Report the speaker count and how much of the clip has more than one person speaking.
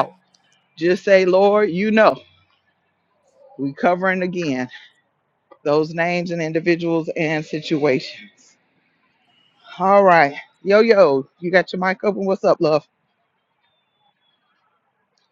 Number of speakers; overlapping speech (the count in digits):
1, no overlap